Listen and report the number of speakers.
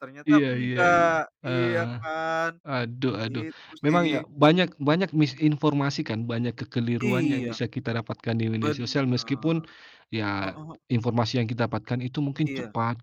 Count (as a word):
two